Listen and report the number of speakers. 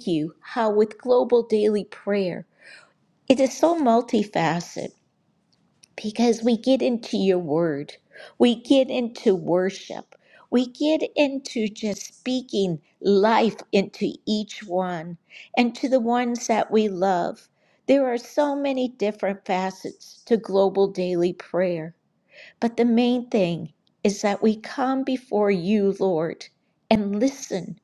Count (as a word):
one